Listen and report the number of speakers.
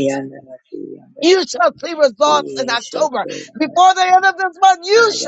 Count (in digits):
2